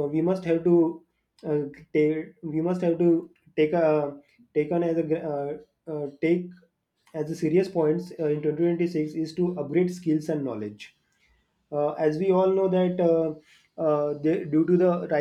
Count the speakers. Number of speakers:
1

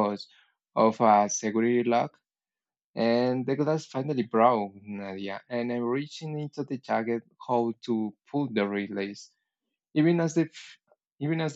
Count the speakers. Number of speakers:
1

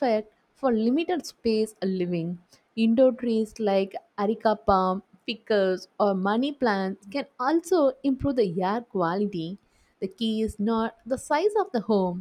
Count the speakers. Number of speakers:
1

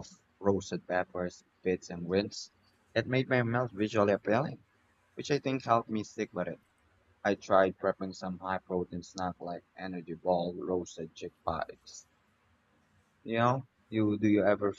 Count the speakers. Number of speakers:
1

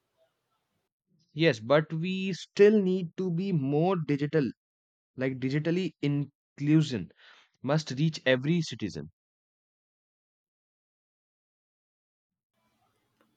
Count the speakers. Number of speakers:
1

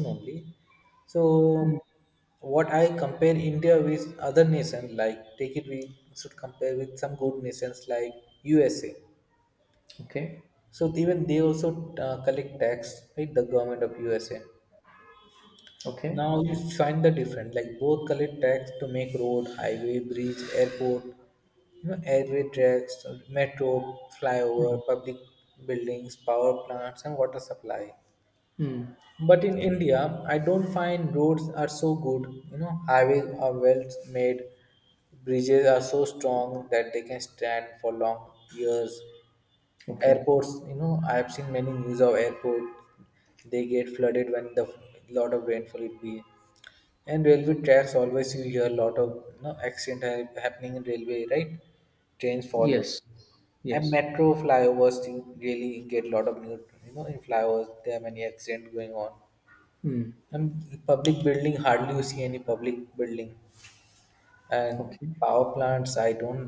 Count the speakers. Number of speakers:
2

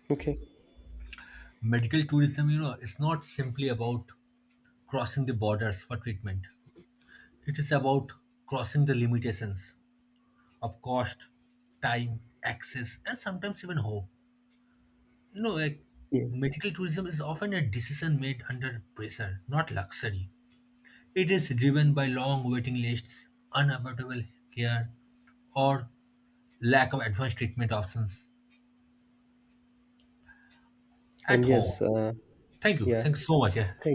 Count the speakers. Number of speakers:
2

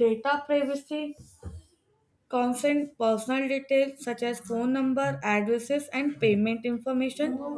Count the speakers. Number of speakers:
1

